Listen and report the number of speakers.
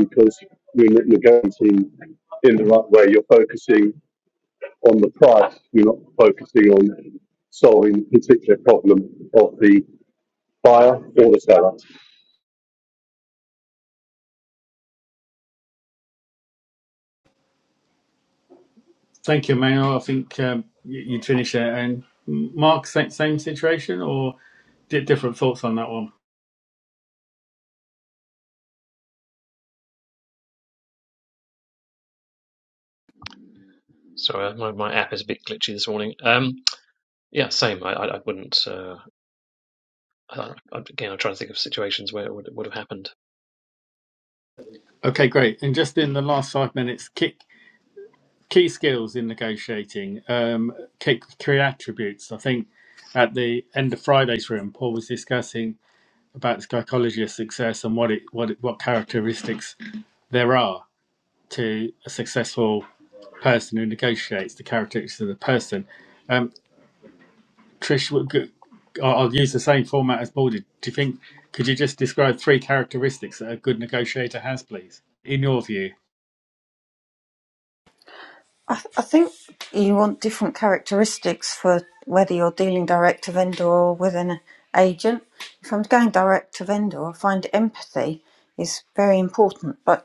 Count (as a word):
four